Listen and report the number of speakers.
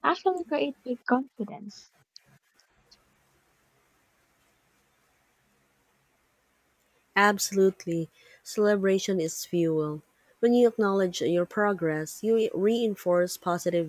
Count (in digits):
2